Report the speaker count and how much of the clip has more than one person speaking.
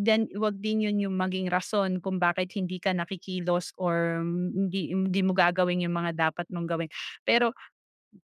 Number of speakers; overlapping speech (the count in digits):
1, no overlap